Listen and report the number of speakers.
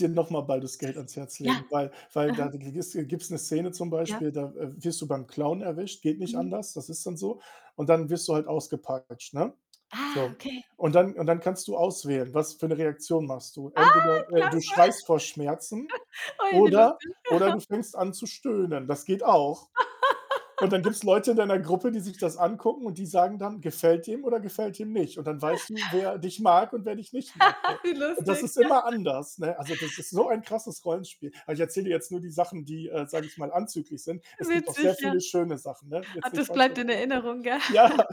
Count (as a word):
two